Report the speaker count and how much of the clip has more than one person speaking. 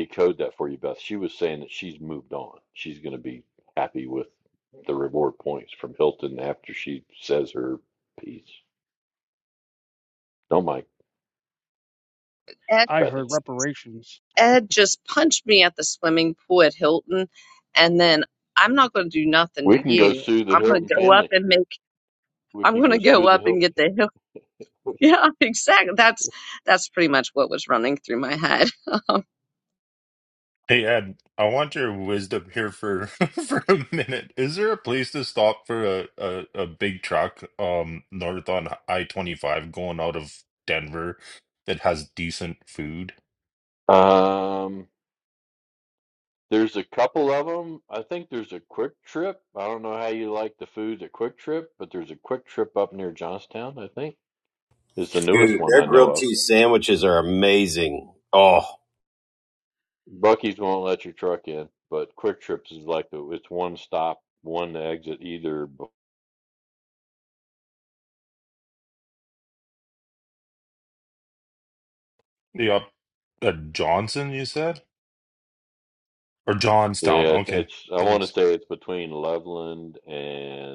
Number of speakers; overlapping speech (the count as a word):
five, about 6%